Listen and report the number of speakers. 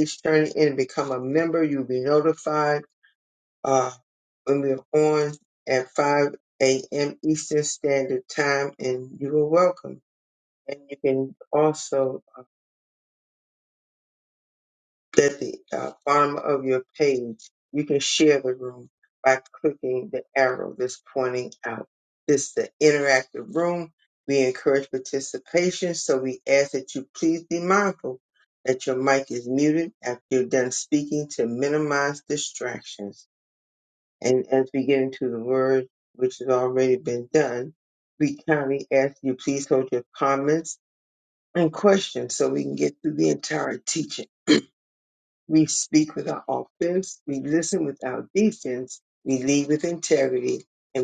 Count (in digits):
1